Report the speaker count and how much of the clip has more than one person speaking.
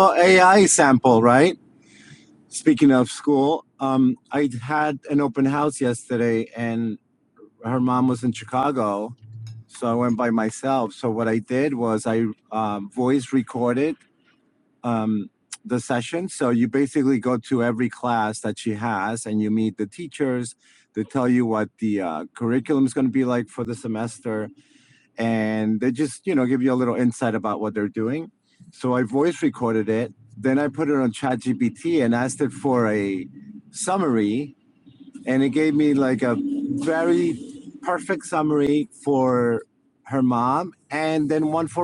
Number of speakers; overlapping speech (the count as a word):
one, no overlap